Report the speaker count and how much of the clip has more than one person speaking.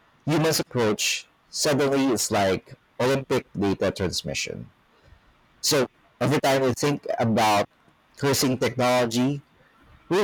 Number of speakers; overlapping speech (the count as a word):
one, no overlap